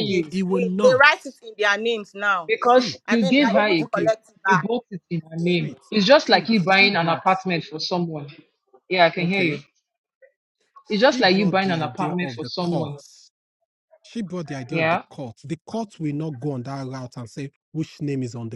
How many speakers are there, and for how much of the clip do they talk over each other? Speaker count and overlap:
3, about 31%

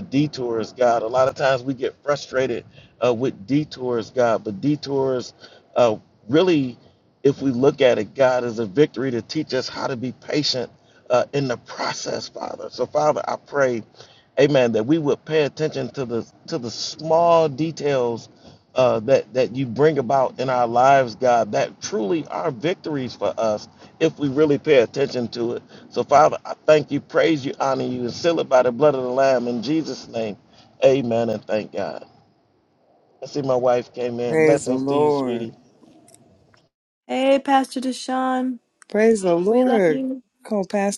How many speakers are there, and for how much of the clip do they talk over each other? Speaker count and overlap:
3, about 4%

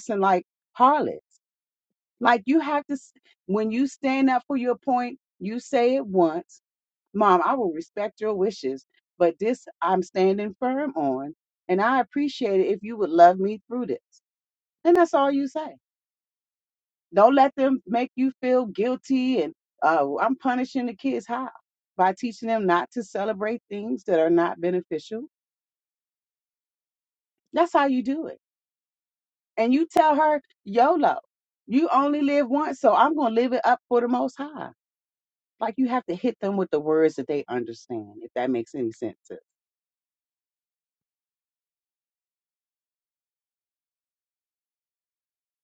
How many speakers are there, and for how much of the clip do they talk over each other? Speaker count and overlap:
1, no overlap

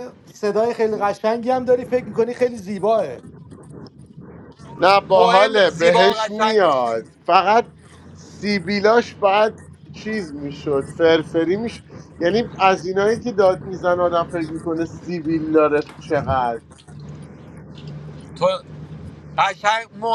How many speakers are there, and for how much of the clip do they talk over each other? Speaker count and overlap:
3, about 9%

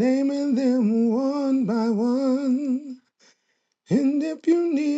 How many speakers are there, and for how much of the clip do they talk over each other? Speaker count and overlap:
1, no overlap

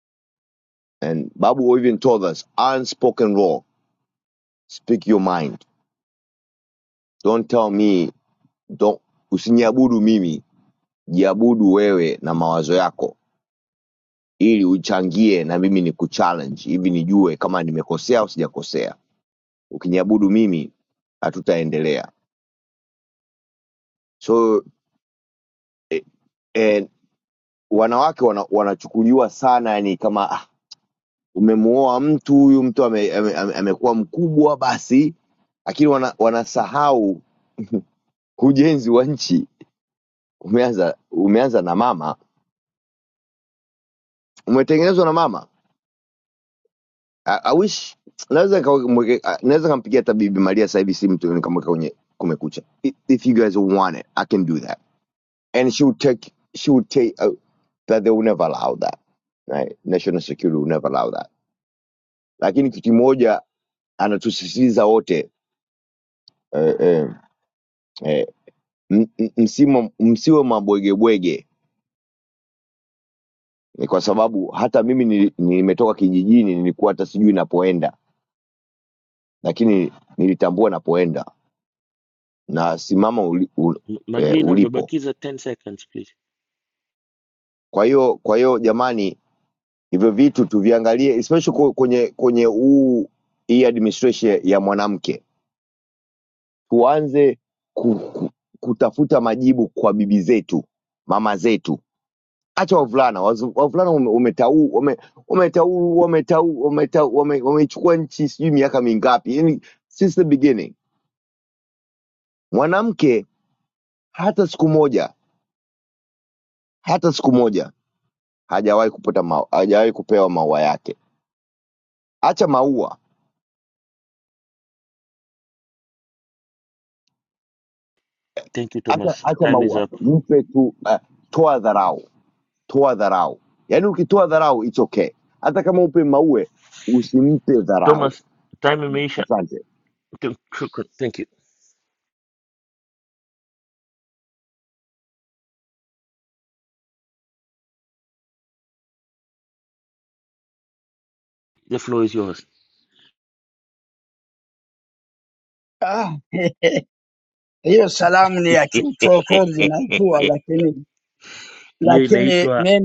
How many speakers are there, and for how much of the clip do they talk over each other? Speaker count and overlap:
3, about 2%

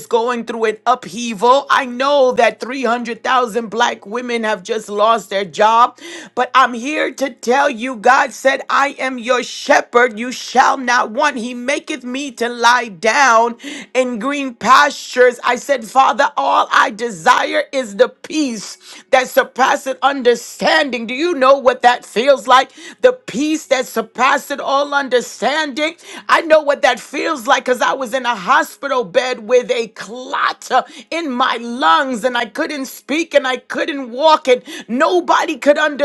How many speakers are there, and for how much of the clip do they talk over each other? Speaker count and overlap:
1, no overlap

